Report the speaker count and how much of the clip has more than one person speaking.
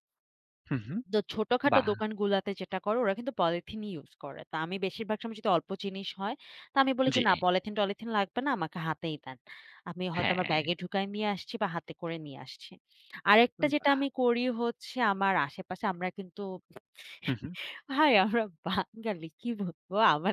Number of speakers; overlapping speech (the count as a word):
two, about 6%